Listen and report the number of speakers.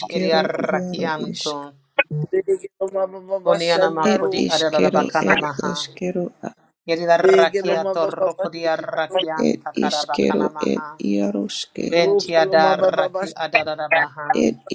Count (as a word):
three